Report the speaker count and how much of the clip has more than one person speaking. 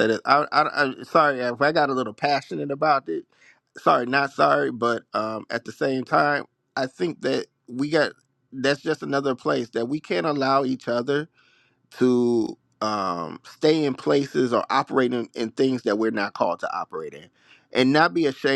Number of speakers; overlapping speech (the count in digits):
1, no overlap